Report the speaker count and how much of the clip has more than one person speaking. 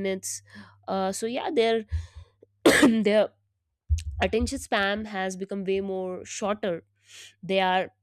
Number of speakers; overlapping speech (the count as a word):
one, no overlap